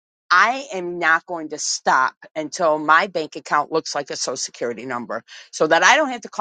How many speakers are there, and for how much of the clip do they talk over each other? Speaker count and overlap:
one, no overlap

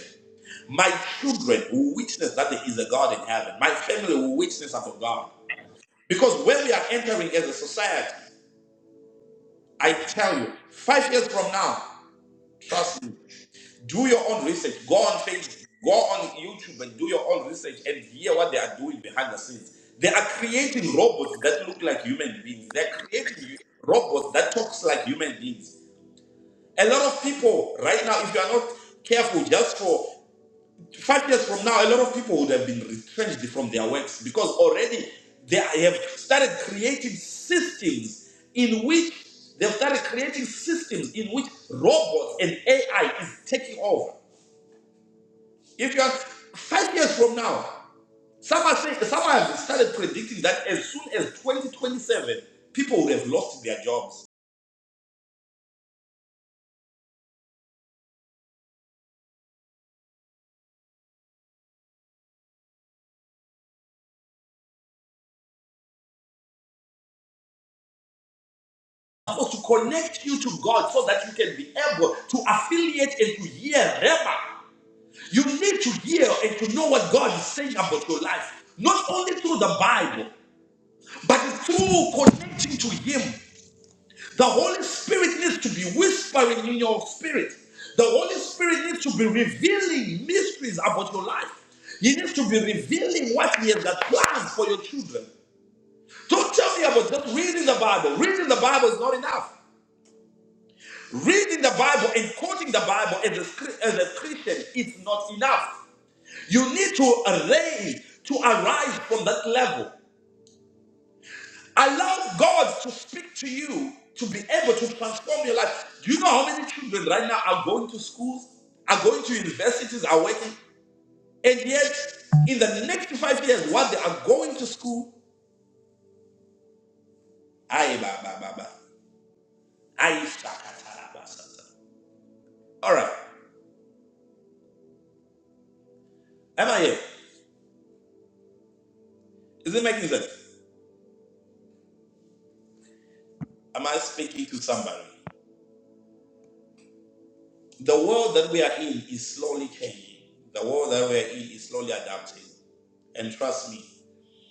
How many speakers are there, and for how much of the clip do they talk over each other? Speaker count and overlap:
one, no overlap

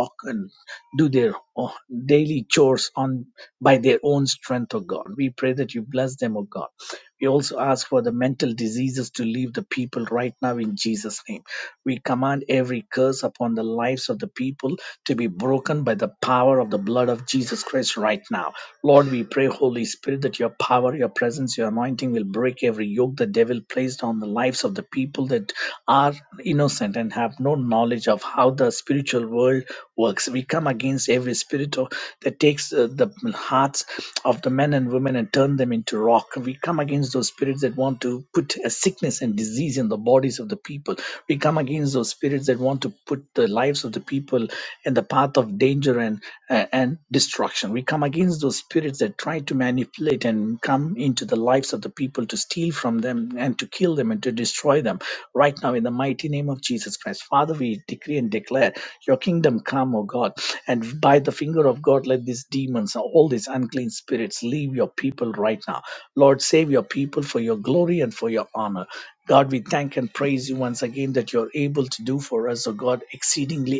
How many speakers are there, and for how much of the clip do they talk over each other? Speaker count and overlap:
one, no overlap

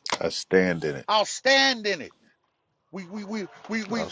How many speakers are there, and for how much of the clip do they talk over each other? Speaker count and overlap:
two, about 5%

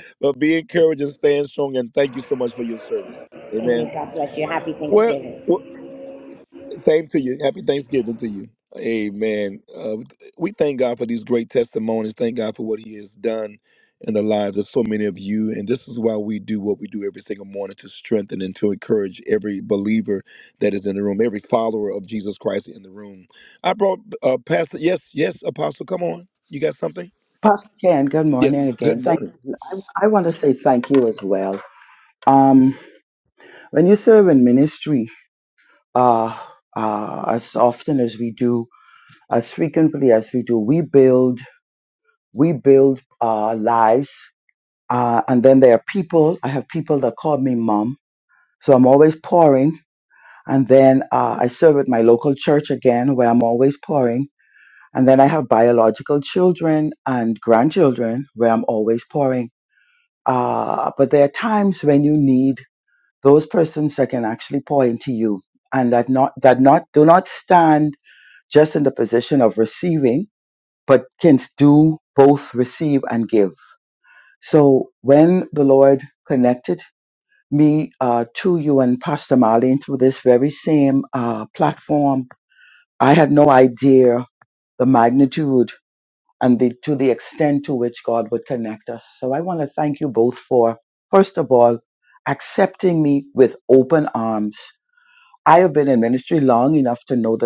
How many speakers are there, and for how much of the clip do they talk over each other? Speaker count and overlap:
three, about 1%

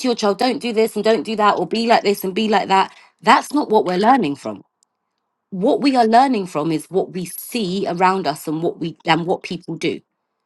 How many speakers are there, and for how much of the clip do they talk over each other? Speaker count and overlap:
one, no overlap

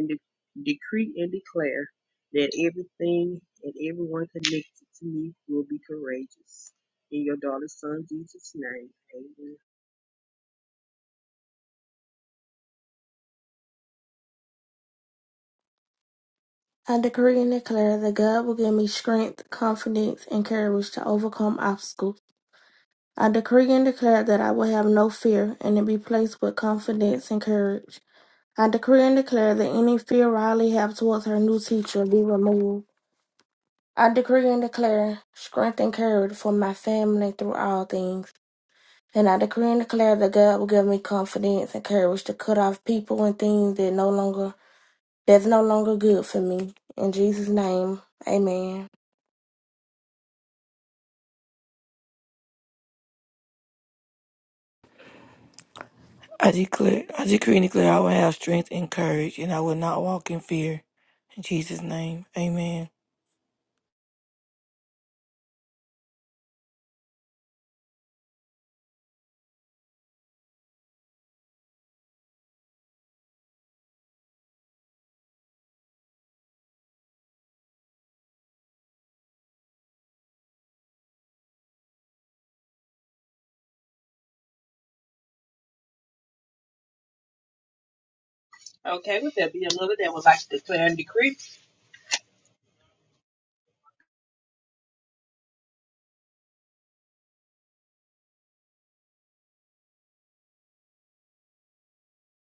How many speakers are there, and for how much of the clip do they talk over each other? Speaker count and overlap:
three, no overlap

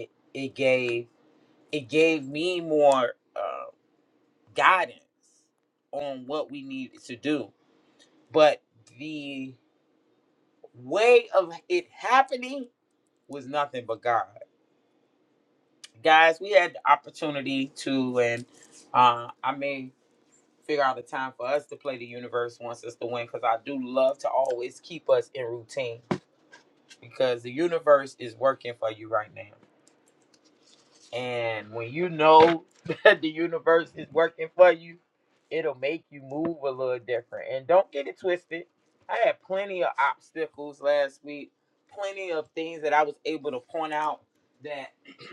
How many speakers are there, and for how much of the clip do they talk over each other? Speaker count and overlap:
one, no overlap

